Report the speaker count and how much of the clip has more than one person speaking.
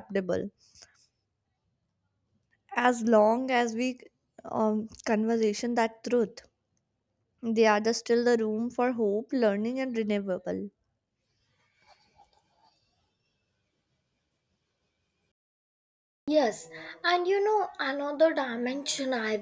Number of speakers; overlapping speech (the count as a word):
two, no overlap